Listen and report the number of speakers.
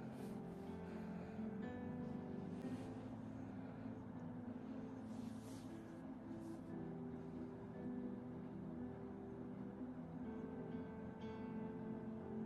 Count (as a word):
zero